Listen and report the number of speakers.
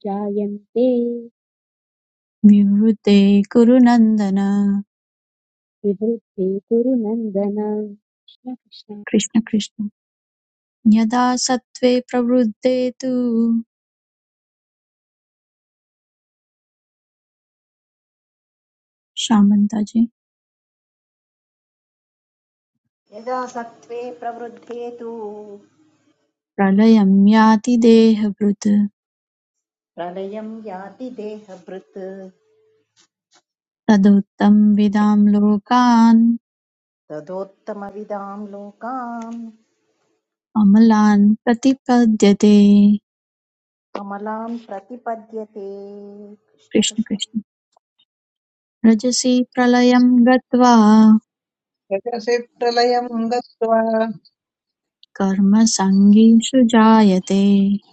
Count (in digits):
4